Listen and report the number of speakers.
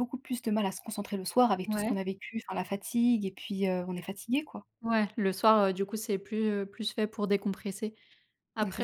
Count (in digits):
2